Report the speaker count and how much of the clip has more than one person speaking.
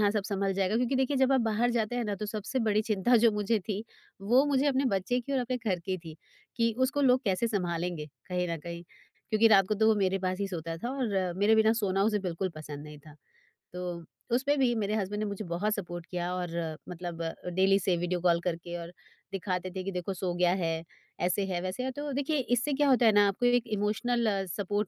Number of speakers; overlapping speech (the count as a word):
one, no overlap